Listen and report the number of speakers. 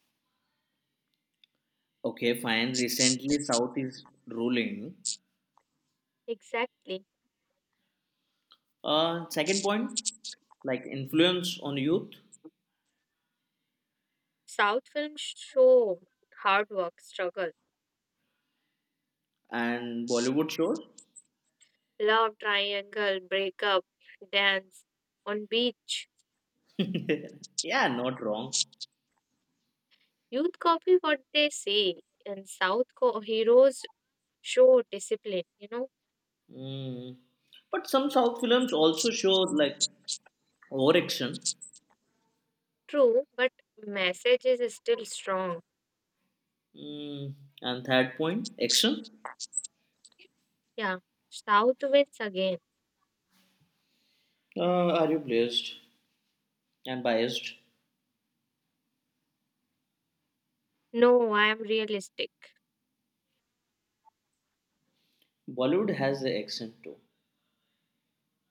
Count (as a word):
two